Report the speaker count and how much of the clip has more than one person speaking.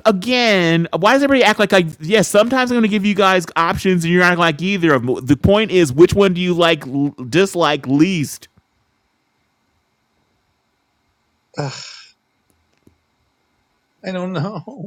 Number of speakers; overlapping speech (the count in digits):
2, no overlap